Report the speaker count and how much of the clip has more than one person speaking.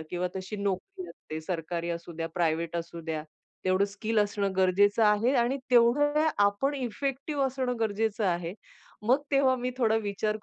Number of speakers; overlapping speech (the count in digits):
1, no overlap